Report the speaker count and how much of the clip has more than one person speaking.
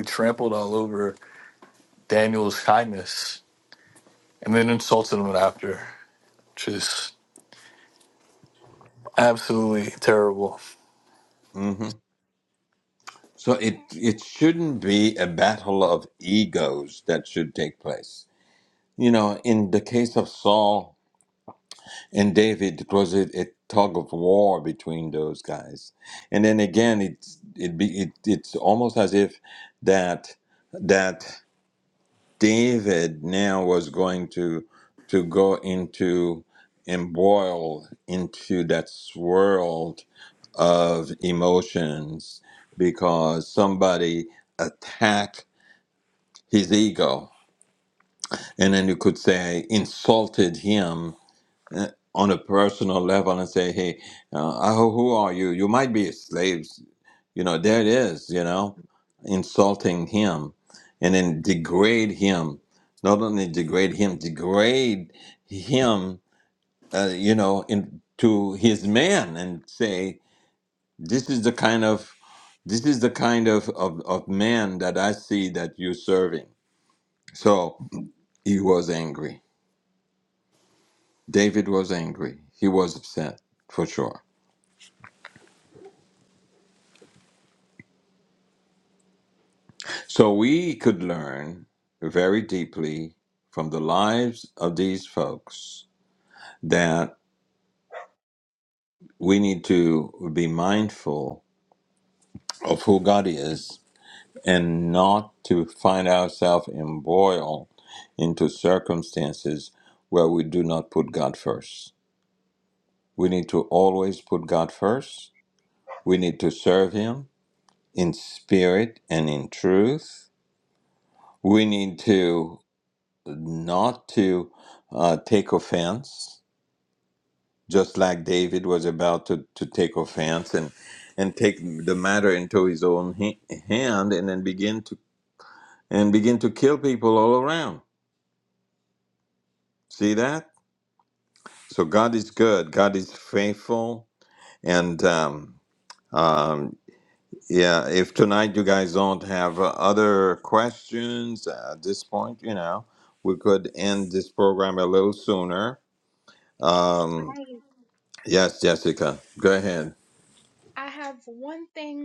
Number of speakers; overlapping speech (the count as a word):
three, no overlap